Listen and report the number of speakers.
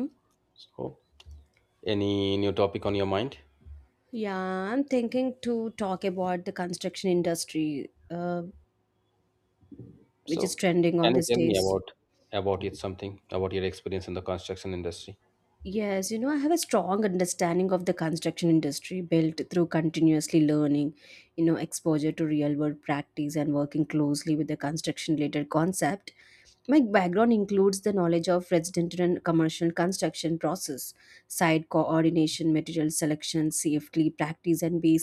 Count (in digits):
2